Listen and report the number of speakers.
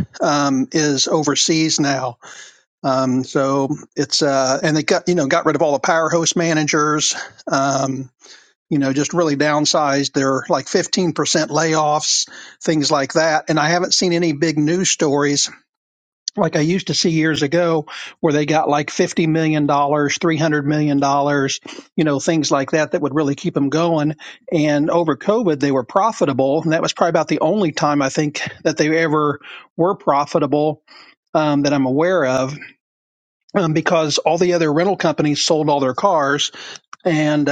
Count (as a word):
one